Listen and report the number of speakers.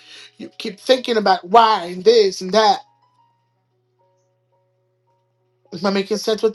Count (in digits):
1